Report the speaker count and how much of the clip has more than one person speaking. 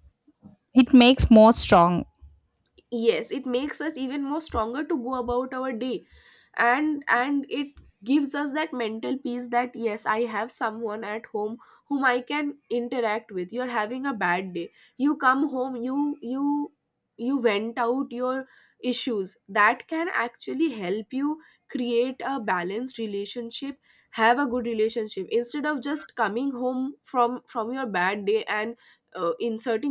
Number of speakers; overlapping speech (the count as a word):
two, no overlap